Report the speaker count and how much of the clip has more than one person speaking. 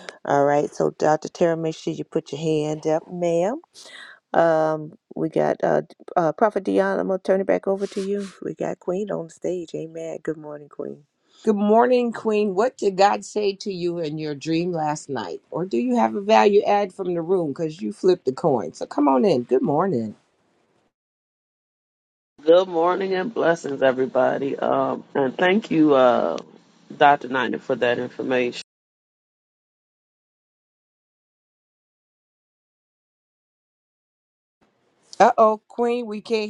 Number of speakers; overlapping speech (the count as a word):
three, no overlap